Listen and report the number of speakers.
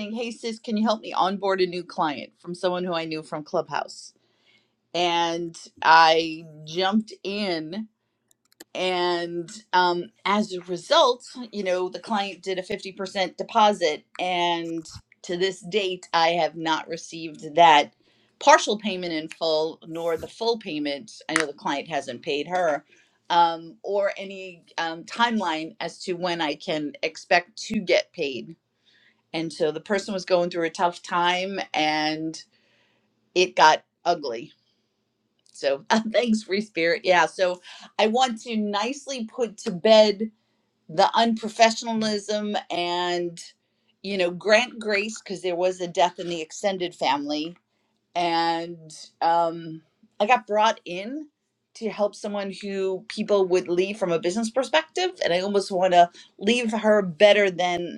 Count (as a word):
one